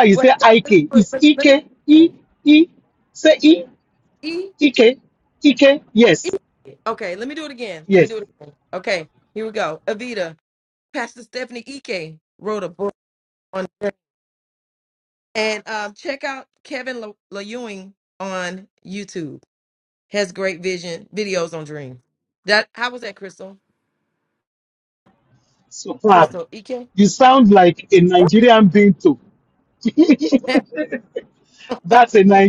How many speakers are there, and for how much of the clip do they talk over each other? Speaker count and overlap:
2, about 5%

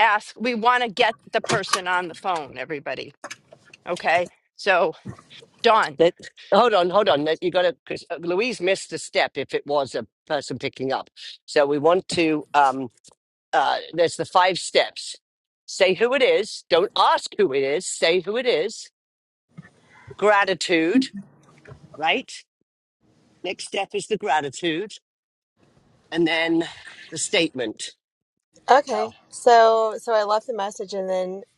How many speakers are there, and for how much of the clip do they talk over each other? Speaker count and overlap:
3, under 1%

